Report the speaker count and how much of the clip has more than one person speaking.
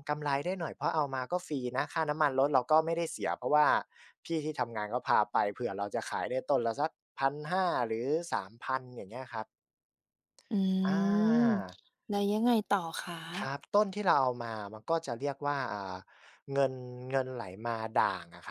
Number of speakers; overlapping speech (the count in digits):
2, about 1%